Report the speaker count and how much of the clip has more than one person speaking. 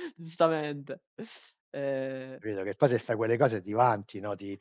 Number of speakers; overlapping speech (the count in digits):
2, no overlap